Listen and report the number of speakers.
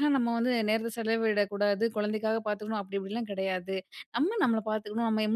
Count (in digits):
1